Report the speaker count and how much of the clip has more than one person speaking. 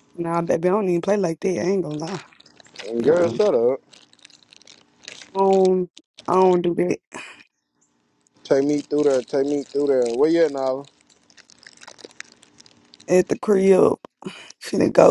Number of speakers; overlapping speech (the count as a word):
two, about 3%